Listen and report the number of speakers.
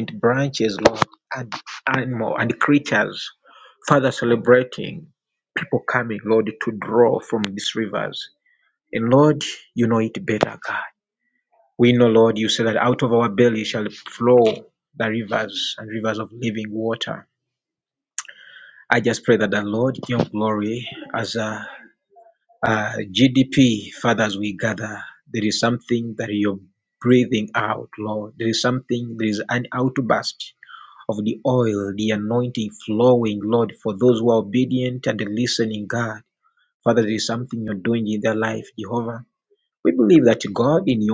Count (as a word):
one